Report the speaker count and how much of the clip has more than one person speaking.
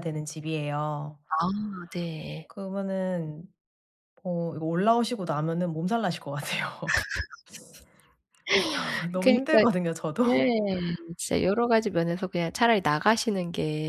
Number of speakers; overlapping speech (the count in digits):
2, about 4%